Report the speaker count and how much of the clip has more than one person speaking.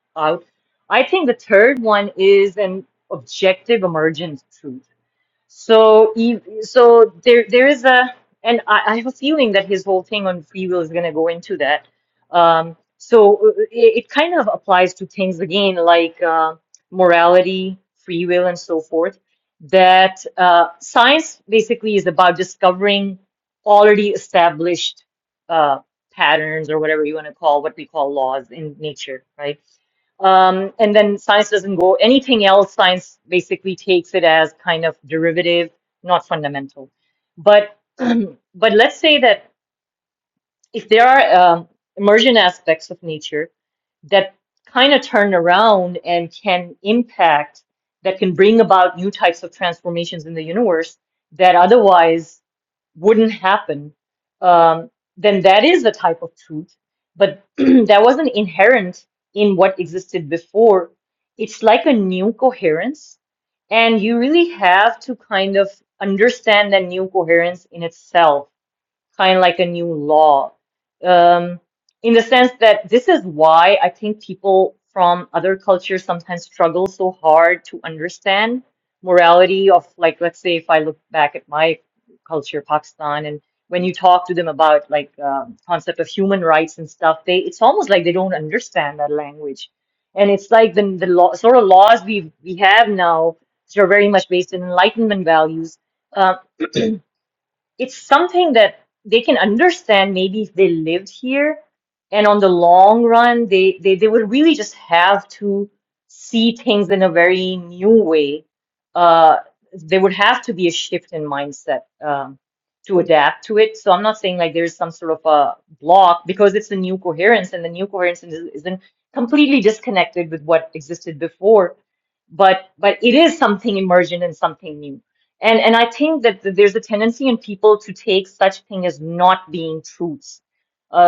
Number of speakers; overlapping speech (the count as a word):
one, no overlap